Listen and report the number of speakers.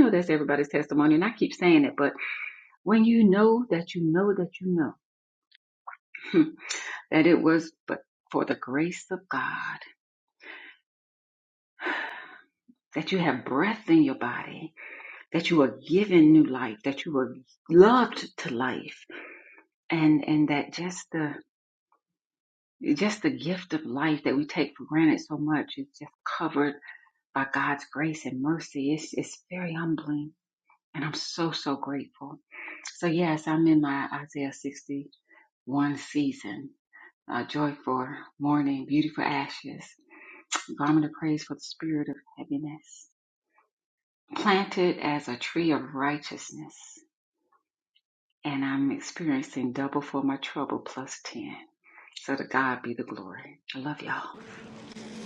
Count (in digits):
1